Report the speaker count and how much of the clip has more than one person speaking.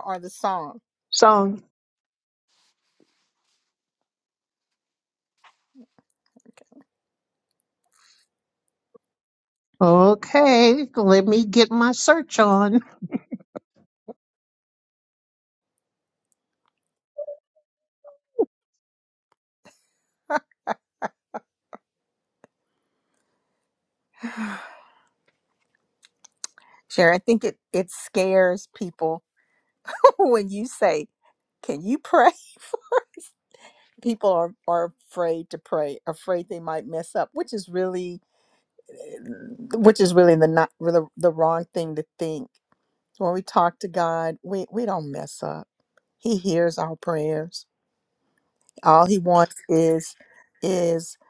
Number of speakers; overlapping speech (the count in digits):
2, no overlap